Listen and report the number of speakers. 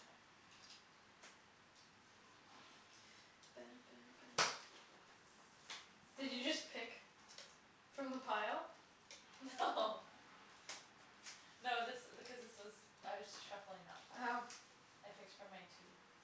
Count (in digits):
2